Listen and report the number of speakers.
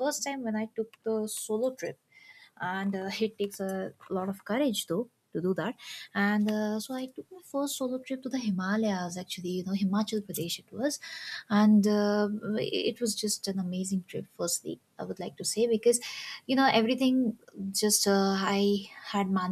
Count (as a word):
one